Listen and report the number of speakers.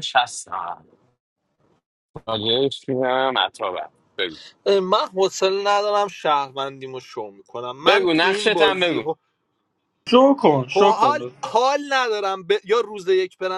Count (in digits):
3